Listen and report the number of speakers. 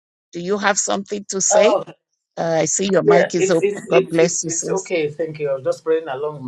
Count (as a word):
two